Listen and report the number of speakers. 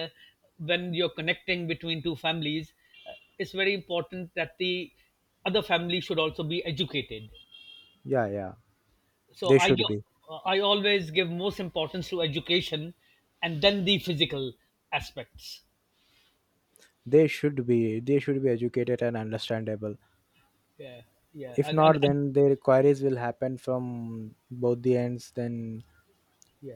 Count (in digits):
2